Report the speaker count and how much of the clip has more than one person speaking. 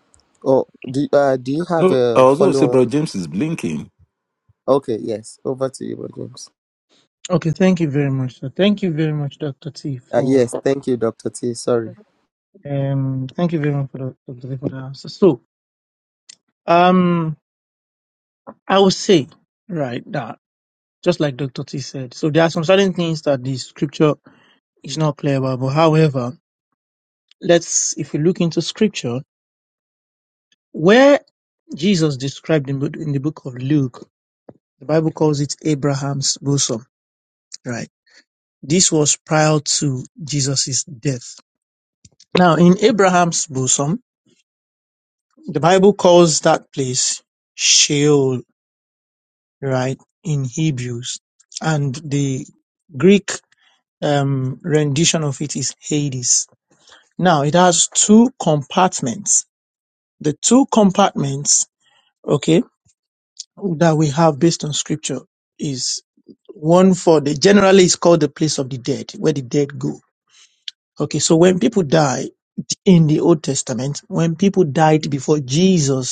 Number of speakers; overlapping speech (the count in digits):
3, about 2%